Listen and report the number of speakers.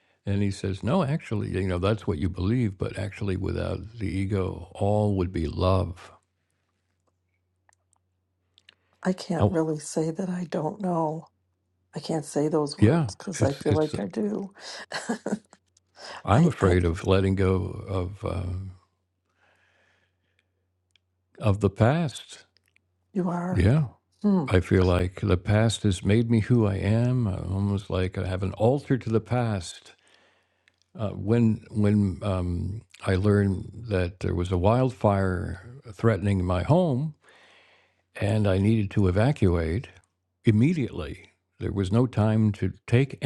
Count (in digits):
2